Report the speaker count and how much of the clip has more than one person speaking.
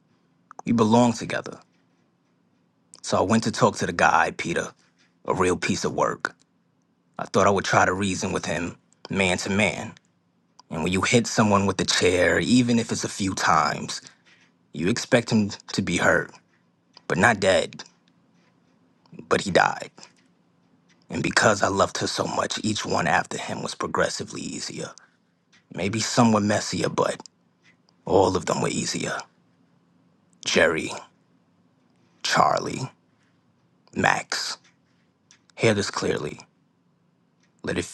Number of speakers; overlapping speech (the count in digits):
1, no overlap